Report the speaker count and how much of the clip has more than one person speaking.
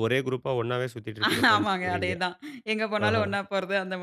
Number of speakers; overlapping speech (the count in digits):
2, about 22%